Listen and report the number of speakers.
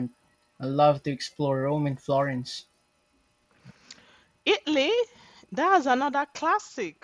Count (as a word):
two